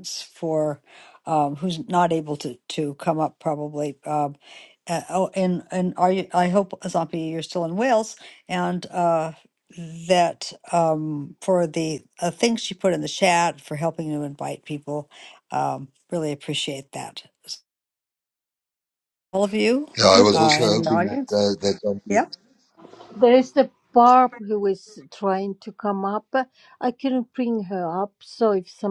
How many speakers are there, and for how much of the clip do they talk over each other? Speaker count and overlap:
3, about 4%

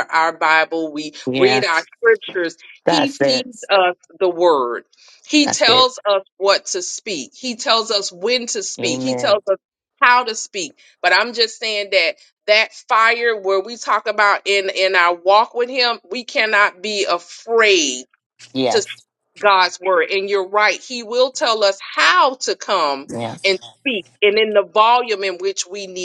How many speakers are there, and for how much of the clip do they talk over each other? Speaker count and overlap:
2, about 7%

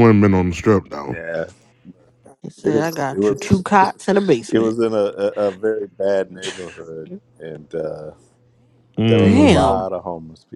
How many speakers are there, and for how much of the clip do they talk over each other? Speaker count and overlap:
3, about 20%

